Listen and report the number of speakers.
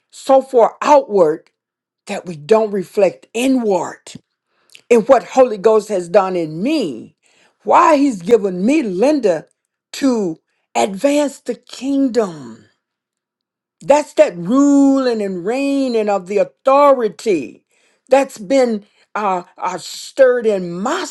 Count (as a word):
one